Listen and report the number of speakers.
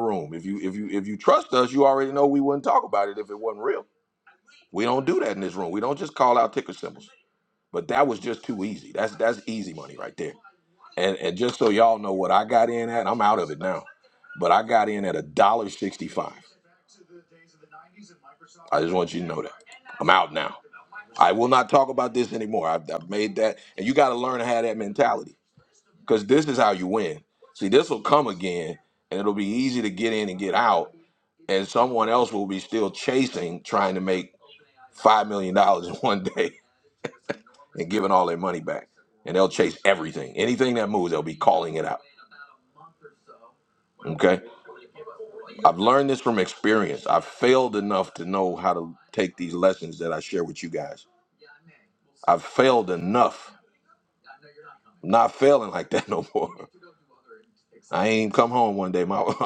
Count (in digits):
1